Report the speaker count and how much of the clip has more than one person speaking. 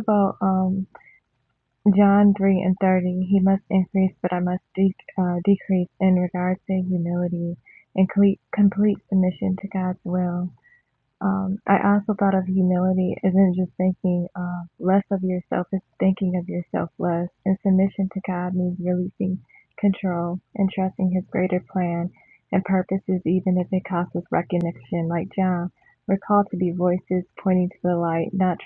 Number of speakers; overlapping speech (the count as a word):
one, no overlap